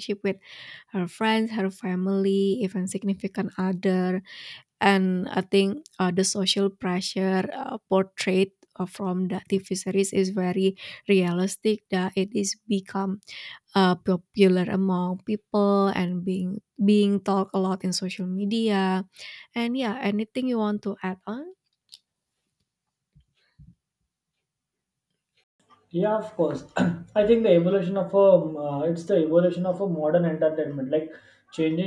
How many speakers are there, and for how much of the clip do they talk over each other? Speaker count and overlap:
two, no overlap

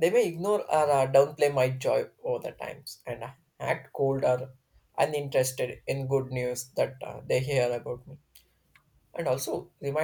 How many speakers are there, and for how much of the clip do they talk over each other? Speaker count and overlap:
one, no overlap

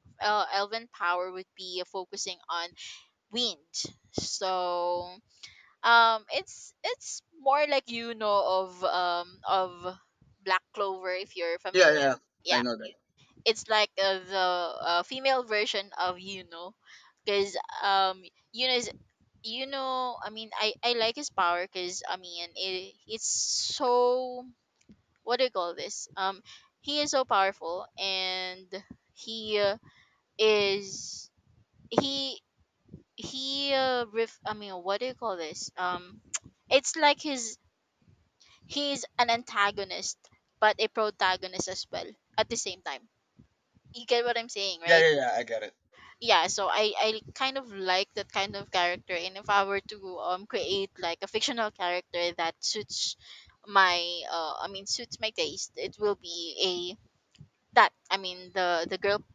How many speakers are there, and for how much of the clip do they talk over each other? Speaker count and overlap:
two, about 1%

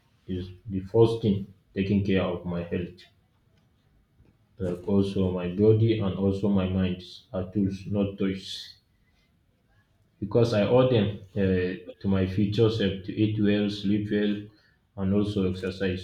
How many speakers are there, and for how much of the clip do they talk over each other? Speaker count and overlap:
one, no overlap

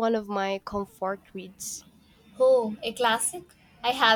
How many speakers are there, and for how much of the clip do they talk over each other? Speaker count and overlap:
two, no overlap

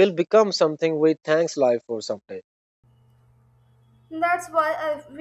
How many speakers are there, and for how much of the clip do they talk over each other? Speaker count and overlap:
two, no overlap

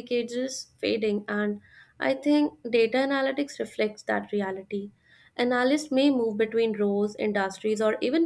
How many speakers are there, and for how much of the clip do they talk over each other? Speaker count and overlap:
one, no overlap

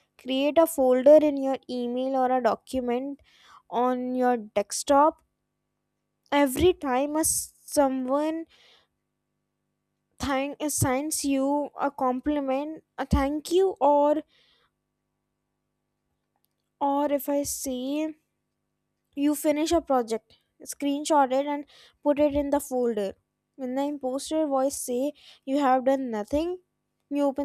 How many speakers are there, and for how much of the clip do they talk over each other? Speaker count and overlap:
one, no overlap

